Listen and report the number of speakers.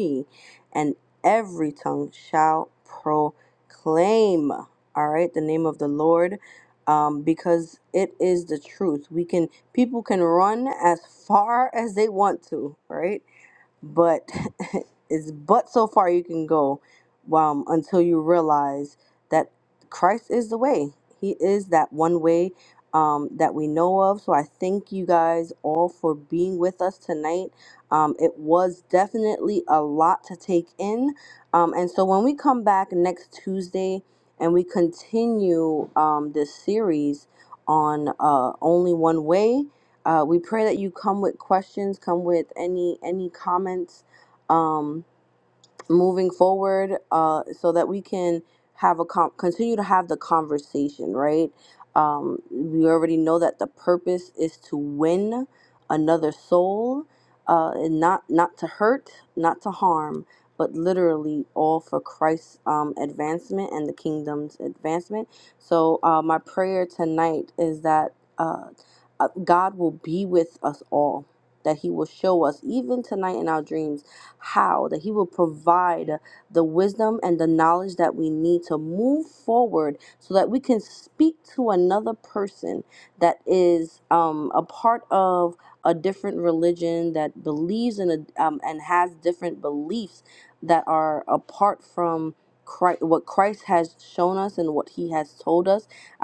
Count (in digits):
1